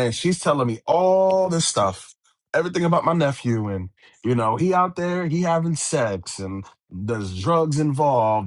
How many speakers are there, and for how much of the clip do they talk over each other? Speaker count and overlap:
1, no overlap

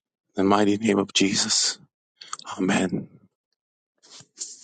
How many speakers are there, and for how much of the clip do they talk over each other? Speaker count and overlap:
1, no overlap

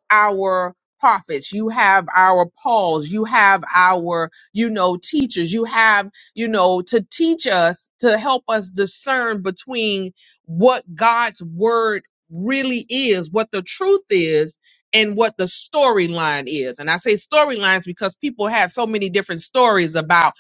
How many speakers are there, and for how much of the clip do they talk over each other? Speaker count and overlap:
1, no overlap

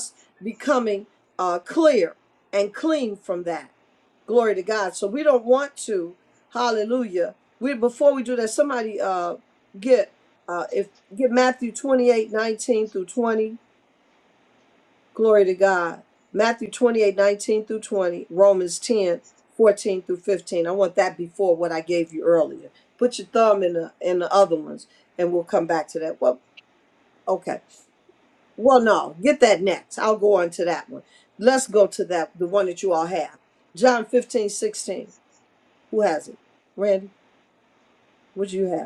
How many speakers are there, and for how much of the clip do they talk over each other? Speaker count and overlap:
1, no overlap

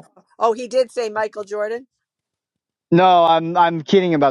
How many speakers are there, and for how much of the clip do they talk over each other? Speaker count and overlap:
2, no overlap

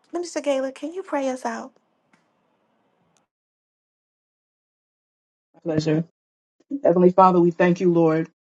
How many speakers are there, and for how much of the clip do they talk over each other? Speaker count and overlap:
2, no overlap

